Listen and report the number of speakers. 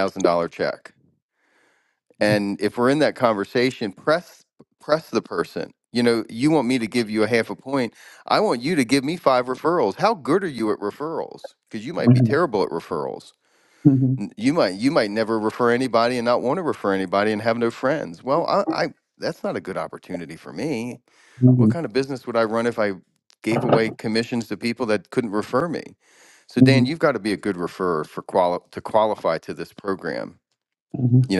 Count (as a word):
two